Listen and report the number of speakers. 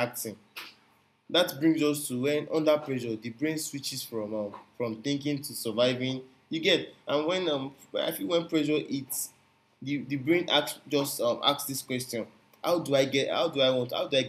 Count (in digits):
1